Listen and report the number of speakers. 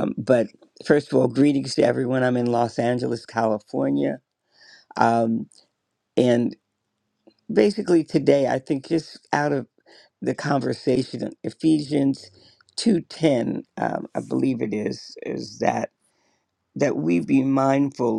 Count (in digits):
1